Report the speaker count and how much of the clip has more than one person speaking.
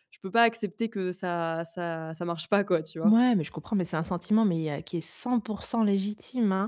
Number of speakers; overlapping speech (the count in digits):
2, about 1%